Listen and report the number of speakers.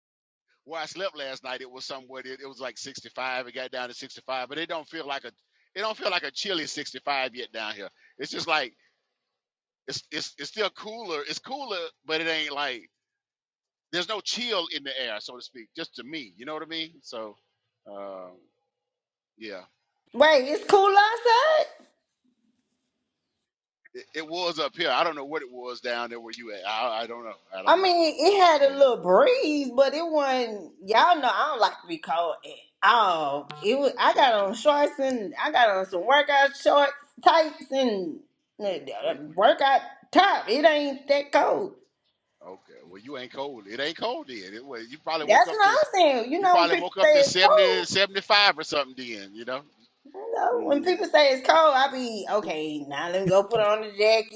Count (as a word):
two